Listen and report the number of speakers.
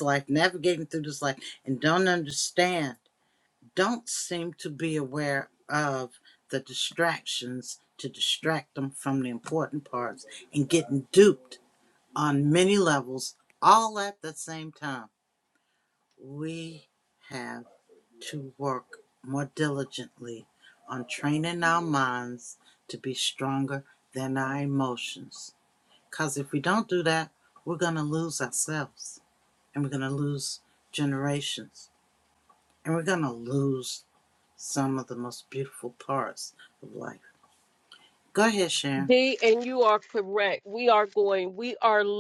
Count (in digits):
2